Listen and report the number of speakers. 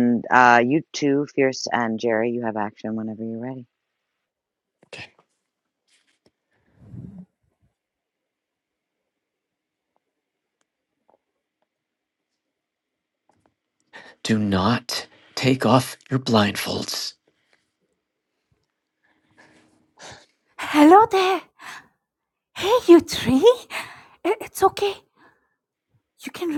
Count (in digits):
3